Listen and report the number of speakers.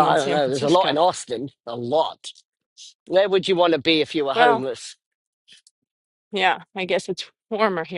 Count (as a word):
two